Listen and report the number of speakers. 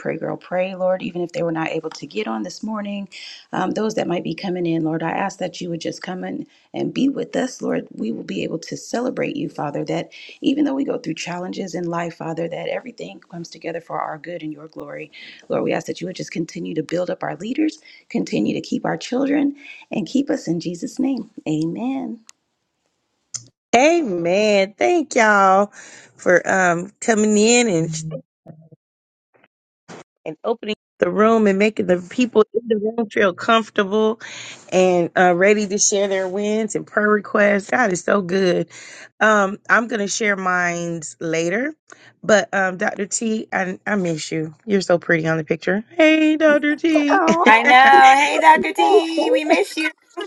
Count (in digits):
3